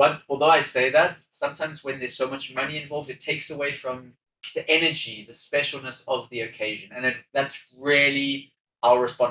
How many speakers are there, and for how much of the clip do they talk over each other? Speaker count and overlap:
1, no overlap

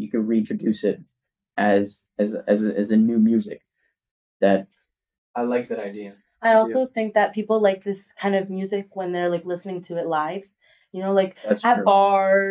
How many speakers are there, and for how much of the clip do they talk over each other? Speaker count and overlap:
3, about 9%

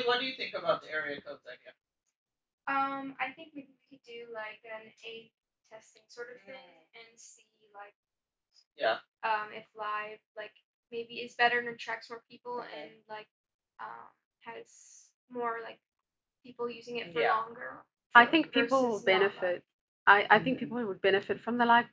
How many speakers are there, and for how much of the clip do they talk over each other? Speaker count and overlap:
3, about 13%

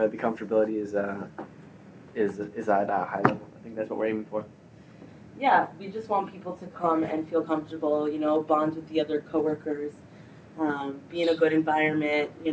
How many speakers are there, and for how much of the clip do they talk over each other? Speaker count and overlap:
2, no overlap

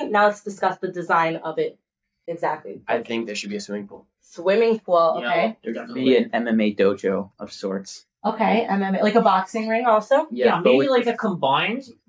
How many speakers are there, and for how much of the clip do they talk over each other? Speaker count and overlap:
4, about 15%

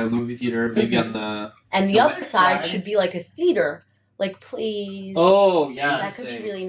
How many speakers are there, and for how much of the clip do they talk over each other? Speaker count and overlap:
3, about 34%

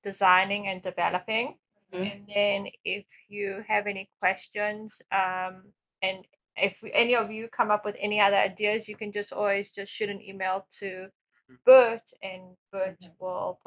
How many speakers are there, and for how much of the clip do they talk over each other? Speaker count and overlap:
1, no overlap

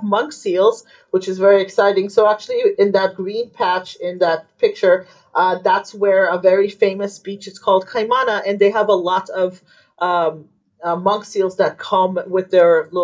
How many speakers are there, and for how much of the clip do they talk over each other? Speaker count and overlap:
1, no overlap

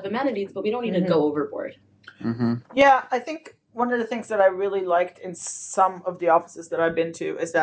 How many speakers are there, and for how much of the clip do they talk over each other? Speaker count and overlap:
2, about 3%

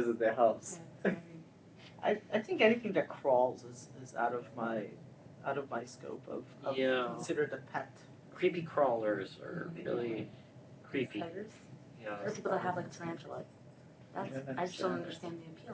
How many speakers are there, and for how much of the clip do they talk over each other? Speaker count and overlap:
4, about 25%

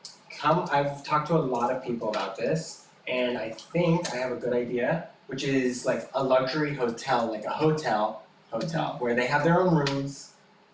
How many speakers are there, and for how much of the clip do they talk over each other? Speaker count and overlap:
1, no overlap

